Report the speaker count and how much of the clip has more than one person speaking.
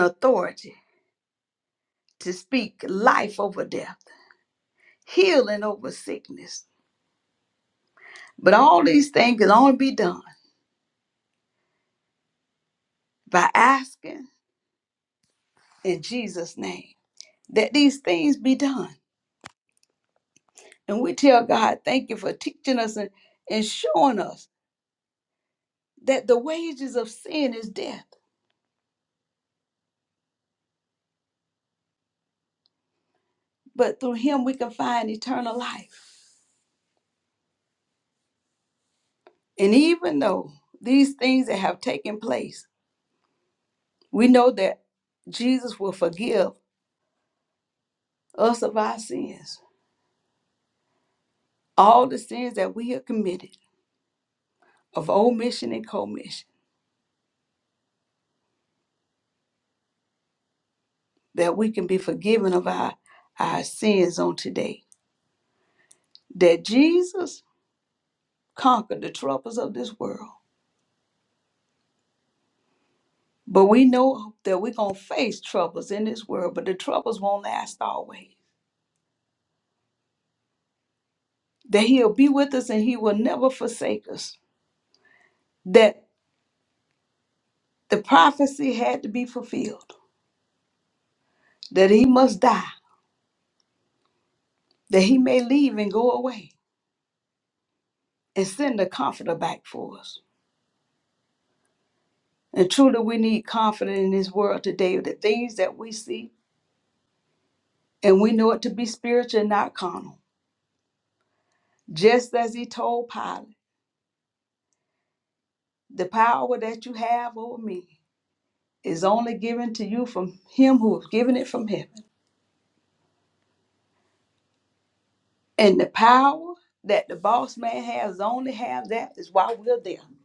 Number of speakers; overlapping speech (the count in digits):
1, no overlap